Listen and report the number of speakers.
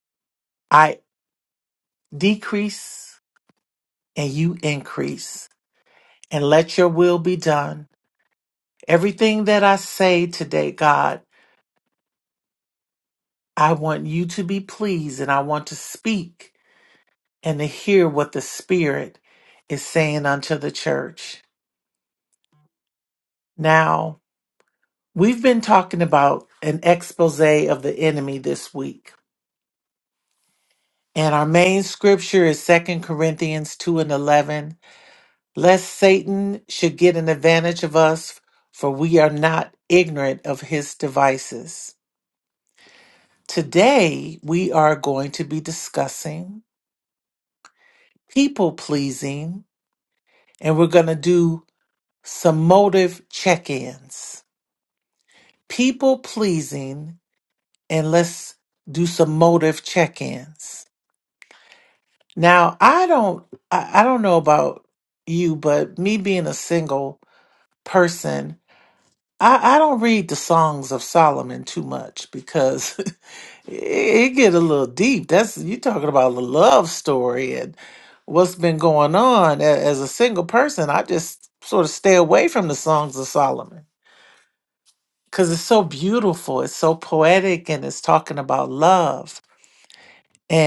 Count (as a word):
one